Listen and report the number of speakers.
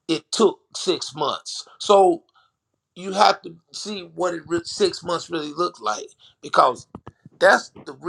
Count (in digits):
1